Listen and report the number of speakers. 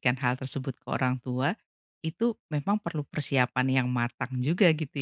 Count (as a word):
one